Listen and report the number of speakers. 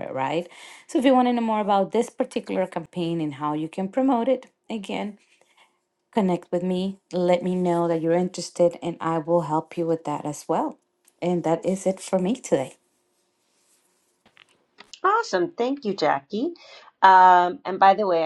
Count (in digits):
2